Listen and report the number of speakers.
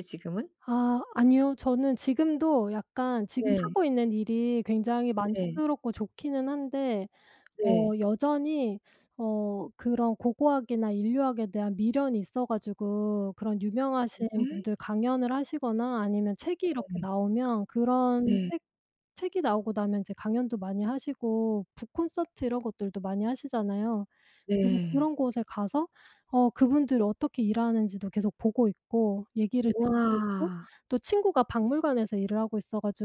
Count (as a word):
two